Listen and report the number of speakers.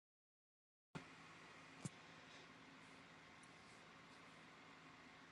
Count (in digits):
0